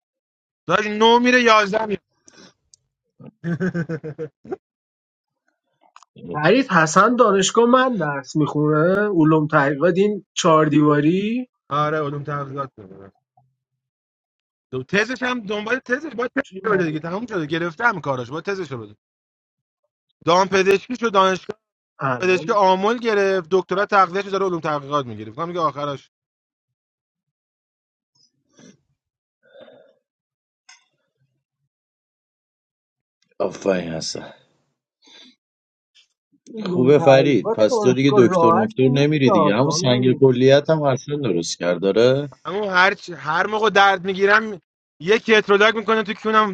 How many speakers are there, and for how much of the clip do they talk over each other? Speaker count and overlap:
3, about 9%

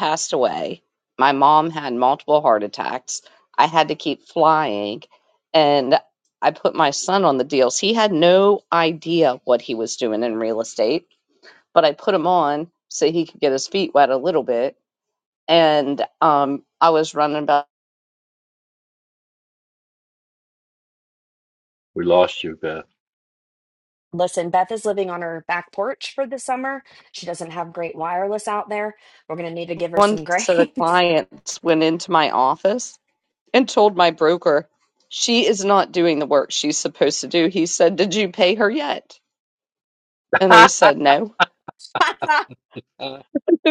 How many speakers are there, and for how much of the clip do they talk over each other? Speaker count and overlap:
3, about 2%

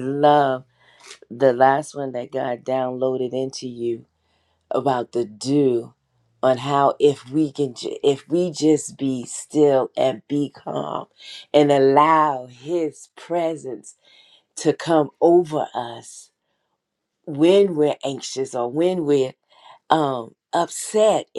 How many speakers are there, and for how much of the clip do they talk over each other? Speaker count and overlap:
1, no overlap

